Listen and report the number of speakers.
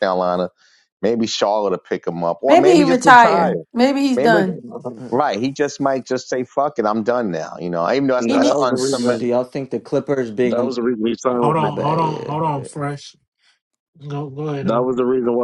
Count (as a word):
five